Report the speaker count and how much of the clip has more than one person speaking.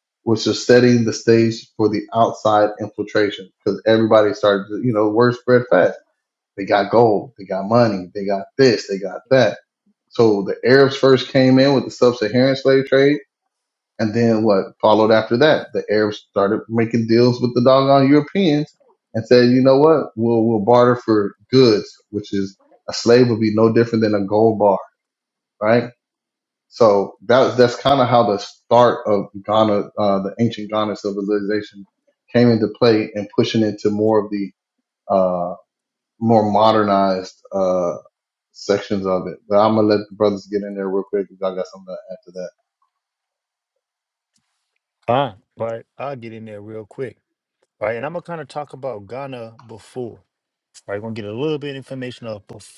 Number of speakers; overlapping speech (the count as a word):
two, no overlap